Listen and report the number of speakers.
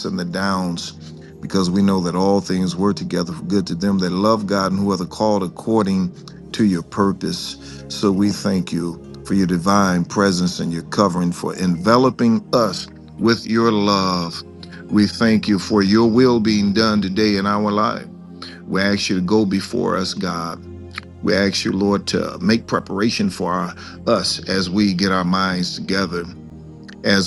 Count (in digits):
1